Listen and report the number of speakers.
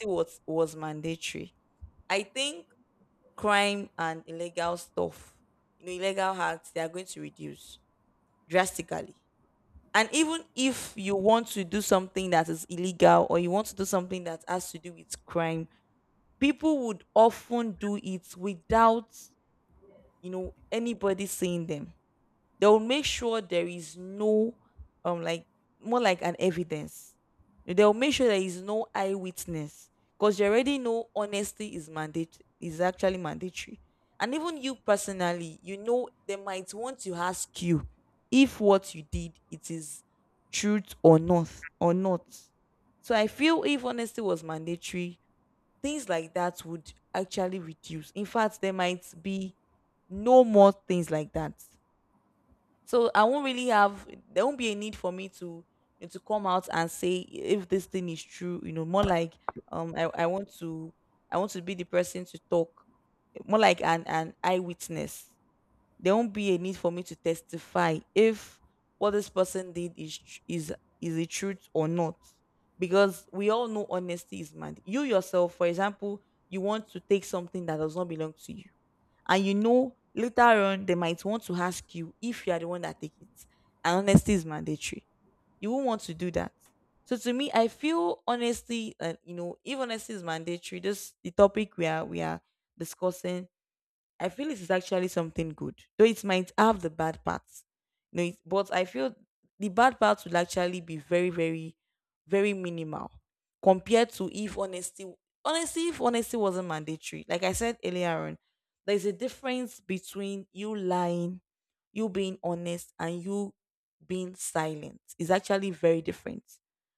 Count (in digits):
1